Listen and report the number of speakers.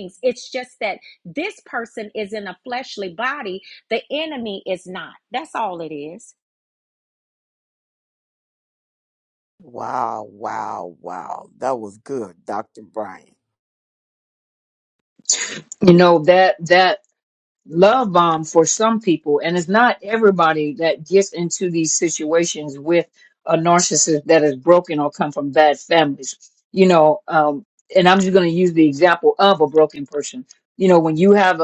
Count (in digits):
3